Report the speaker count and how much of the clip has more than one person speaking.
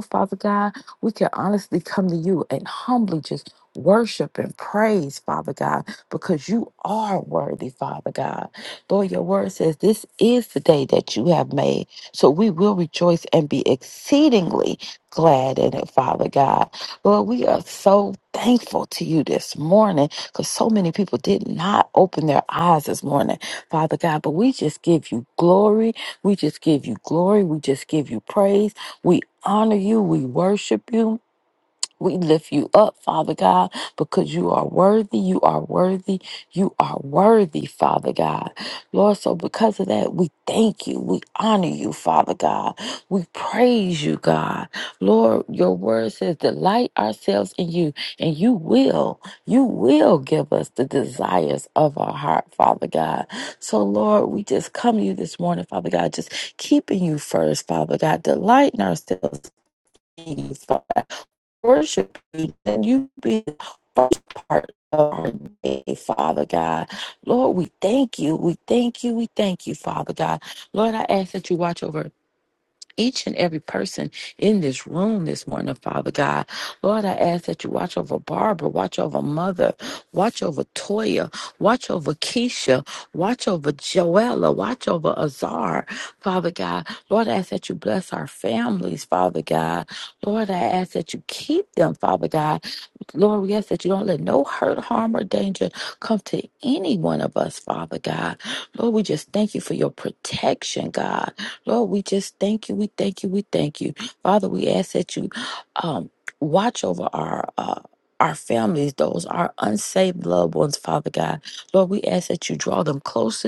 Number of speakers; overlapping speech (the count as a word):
one, no overlap